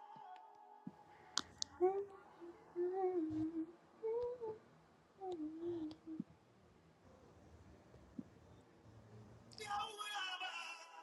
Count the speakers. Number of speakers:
0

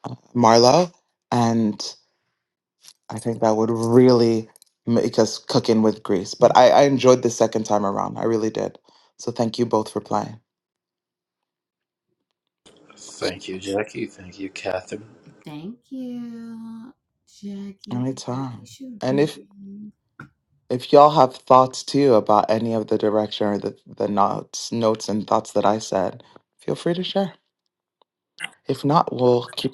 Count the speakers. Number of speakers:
3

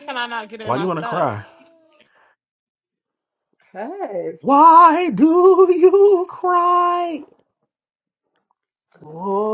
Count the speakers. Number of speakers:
3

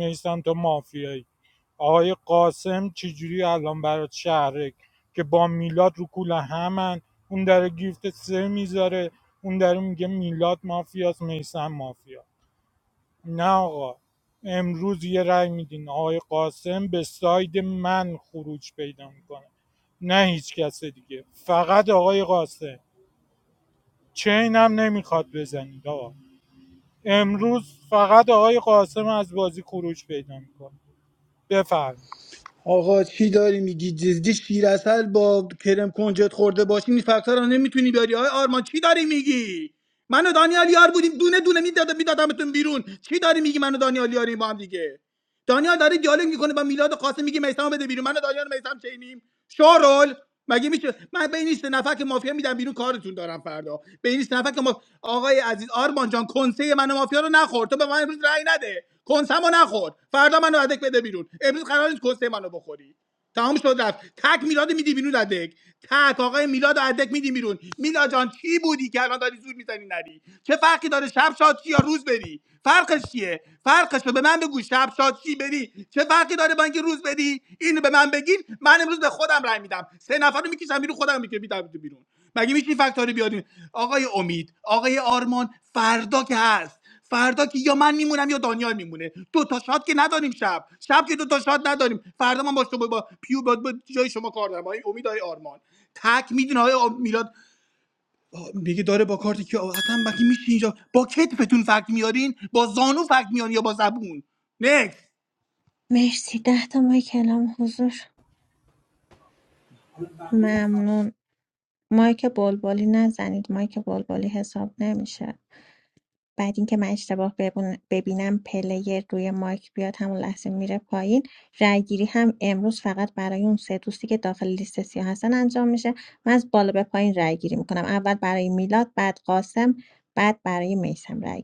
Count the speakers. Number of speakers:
3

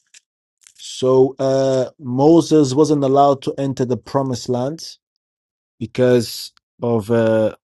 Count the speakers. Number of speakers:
1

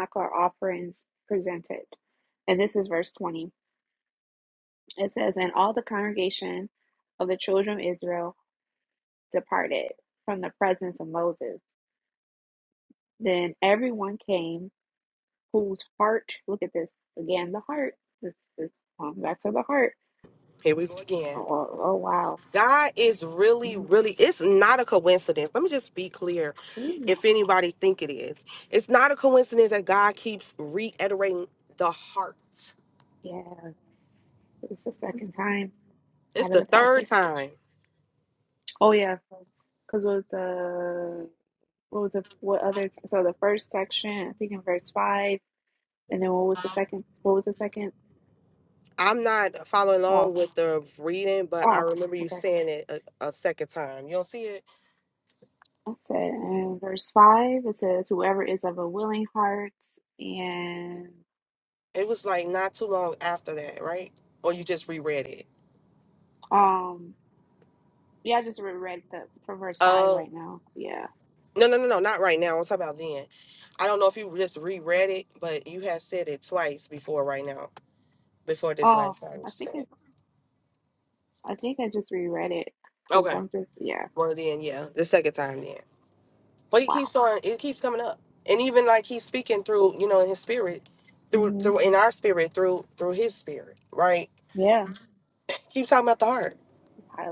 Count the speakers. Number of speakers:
2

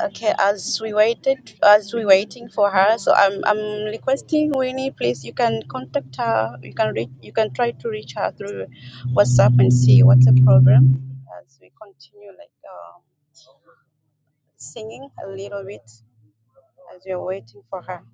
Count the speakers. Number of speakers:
1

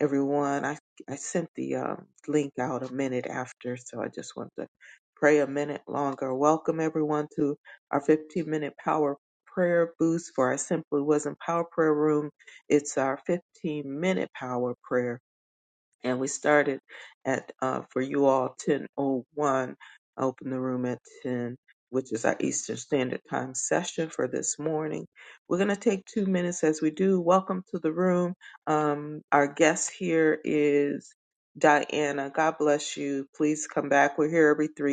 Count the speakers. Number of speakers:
1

